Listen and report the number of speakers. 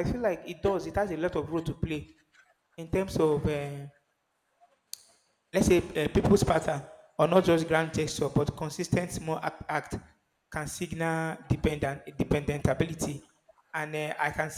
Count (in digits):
1